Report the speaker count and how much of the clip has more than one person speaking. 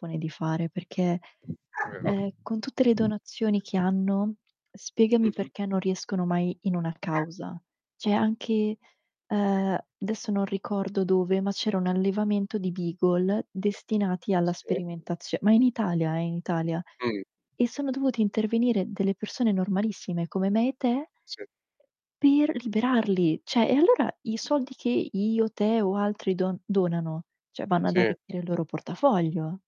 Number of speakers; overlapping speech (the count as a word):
two, about 3%